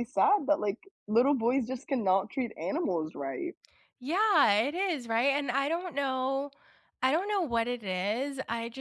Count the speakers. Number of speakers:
2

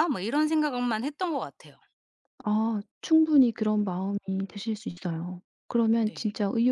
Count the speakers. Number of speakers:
2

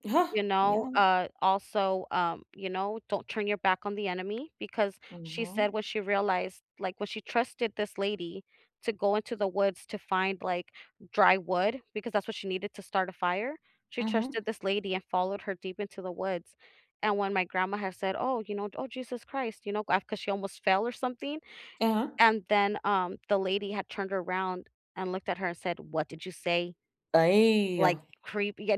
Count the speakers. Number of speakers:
2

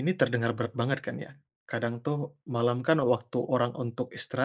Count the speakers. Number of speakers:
1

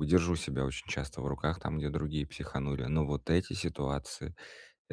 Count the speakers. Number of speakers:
1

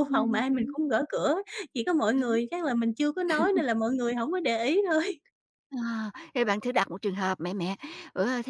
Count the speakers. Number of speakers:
2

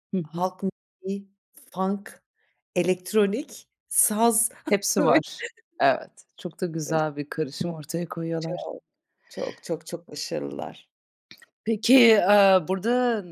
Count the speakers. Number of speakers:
2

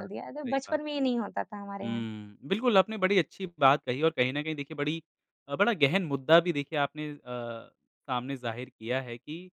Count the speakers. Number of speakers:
2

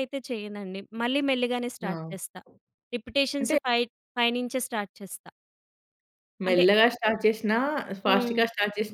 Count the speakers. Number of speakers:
2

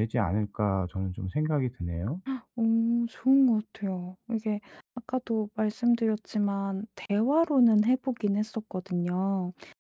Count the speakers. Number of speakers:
2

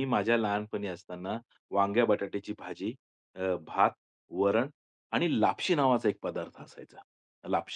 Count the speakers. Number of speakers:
1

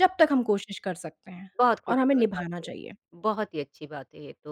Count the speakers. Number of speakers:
2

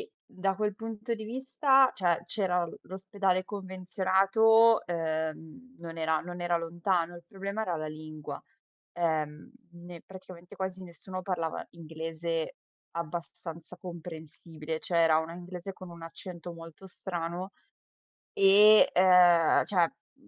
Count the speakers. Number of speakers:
1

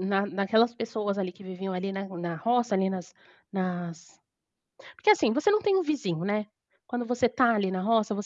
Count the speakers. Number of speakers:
1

